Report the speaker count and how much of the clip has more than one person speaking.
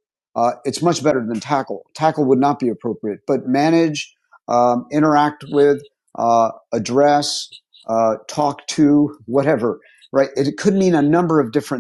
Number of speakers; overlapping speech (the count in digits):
1, no overlap